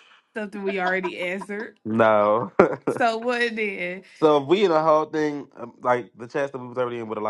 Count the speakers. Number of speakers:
2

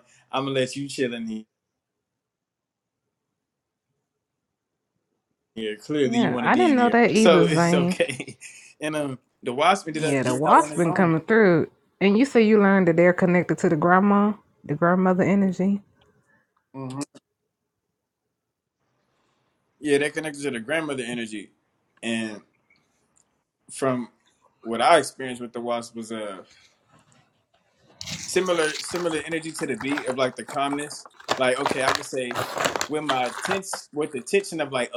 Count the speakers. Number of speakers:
2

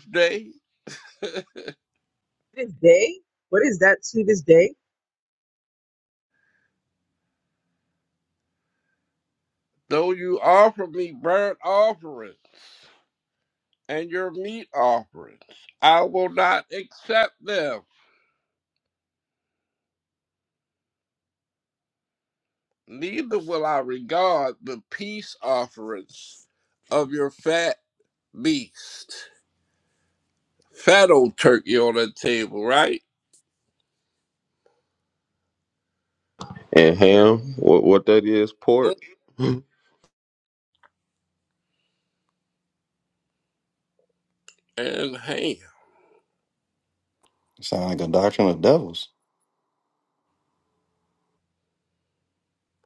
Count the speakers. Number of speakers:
4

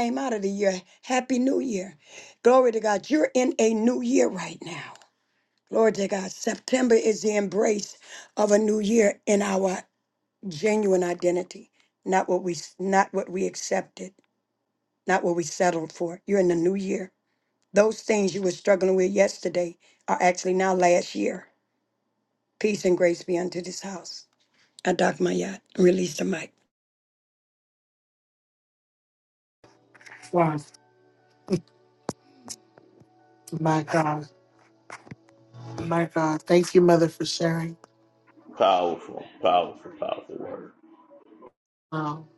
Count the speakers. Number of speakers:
3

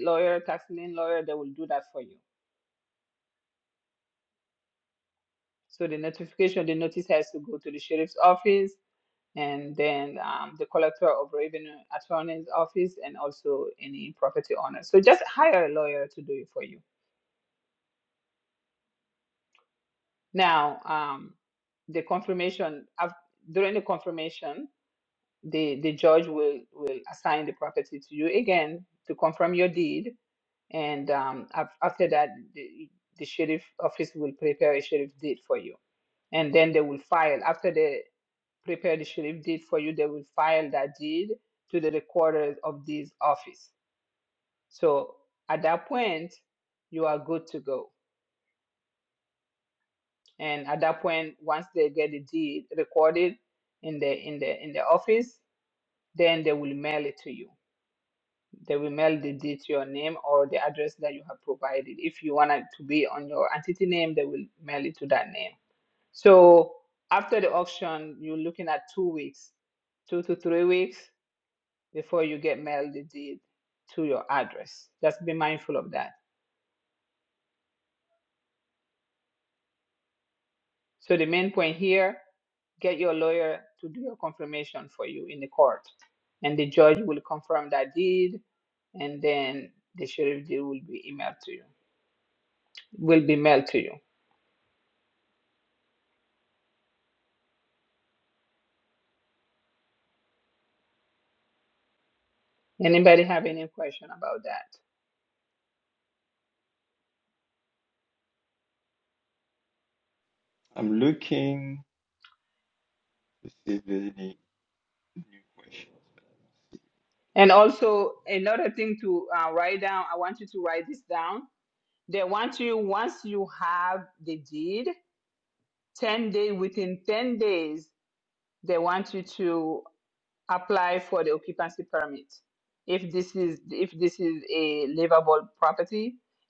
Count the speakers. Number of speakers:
2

